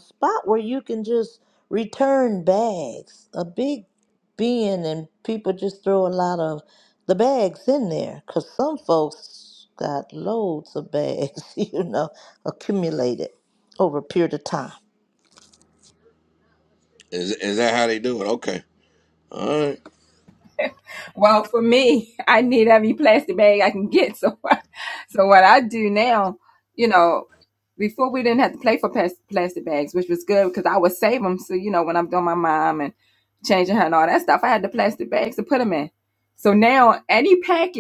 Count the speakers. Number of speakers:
3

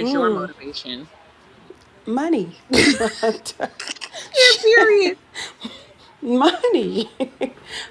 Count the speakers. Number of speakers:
2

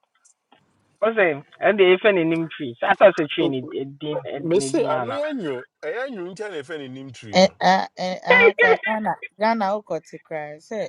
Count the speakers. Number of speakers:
3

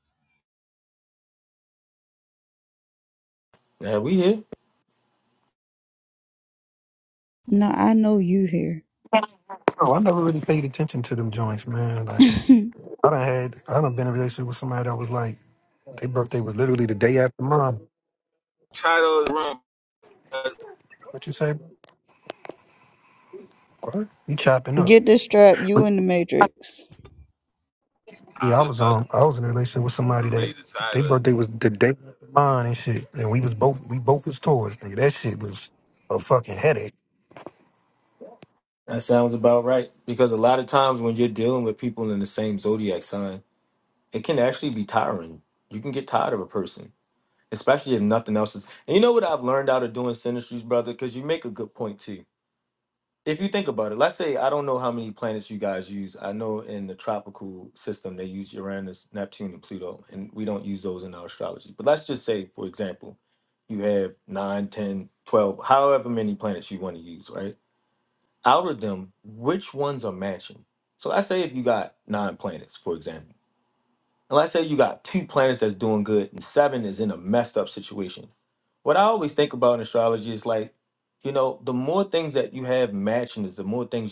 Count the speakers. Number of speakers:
4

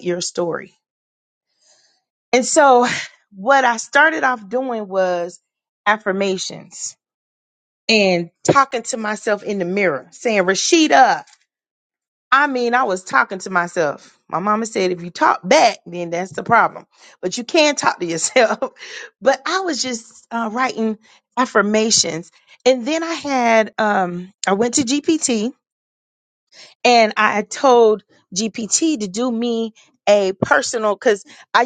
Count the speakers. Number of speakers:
1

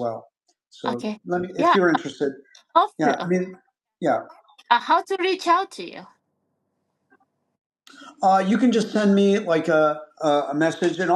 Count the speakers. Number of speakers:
2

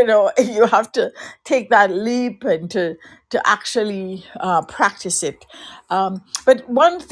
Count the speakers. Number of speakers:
1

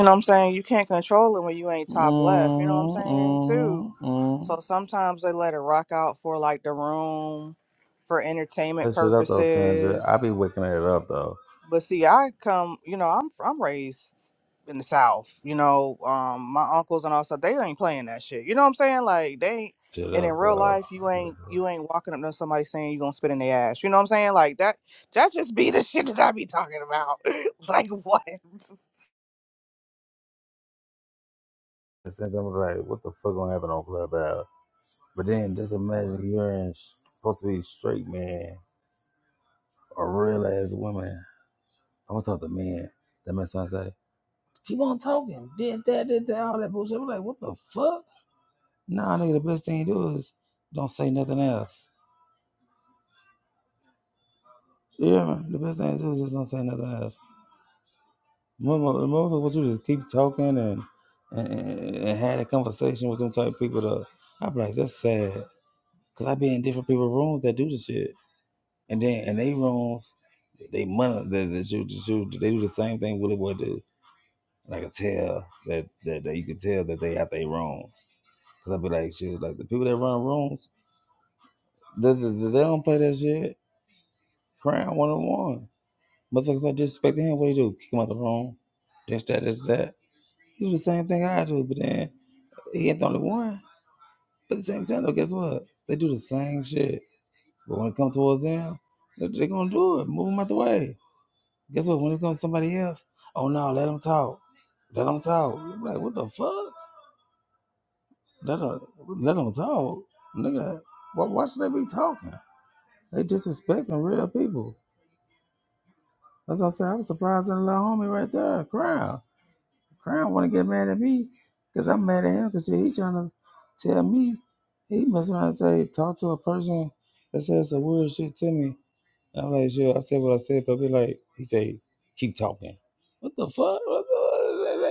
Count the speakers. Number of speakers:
2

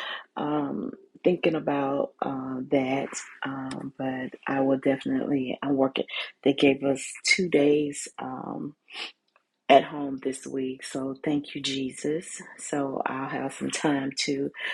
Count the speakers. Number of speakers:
1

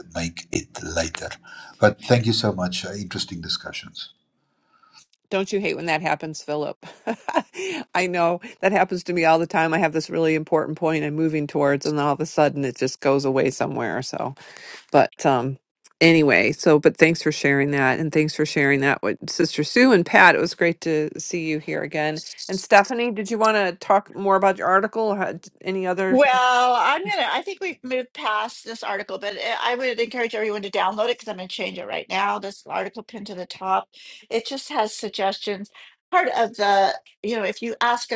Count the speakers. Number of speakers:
3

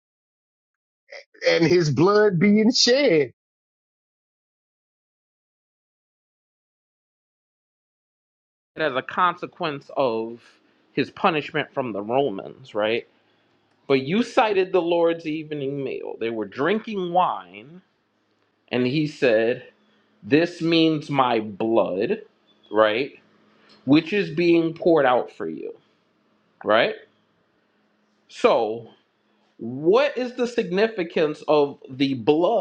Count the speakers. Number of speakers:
2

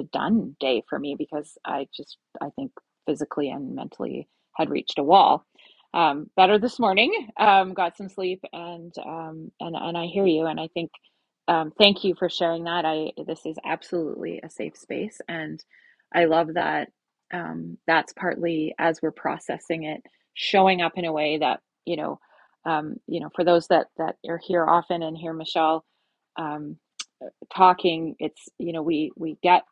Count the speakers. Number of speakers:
1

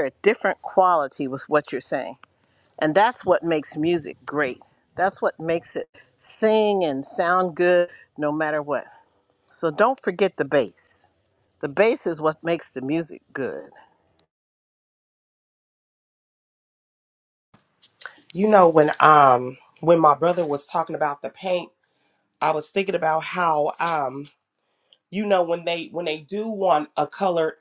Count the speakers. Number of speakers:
2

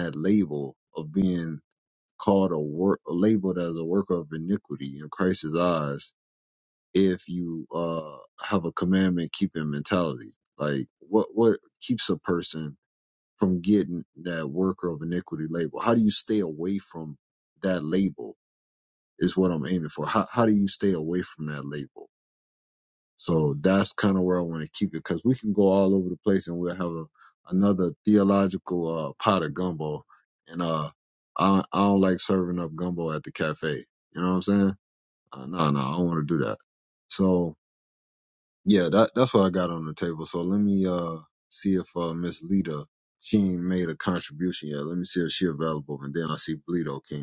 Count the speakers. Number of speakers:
1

